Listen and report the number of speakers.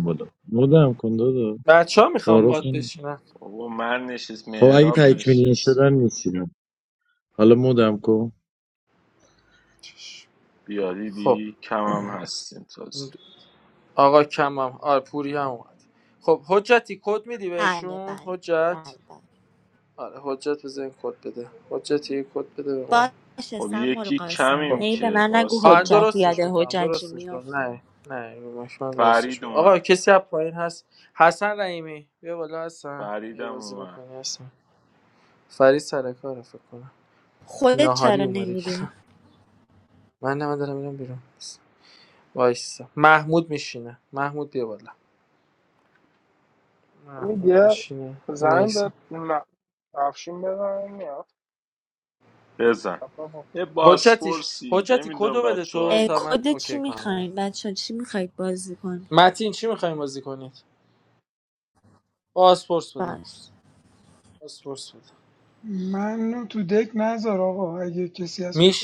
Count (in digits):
6